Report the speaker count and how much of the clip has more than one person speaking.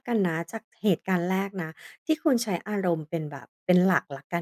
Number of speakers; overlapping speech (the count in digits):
1, no overlap